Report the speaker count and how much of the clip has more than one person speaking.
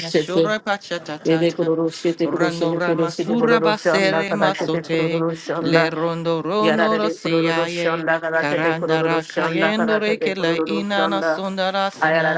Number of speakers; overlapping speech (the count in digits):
2, about 71%